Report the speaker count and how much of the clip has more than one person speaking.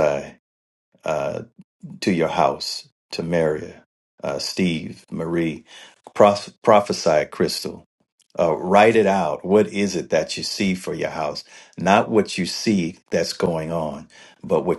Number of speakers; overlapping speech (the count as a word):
one, no overlap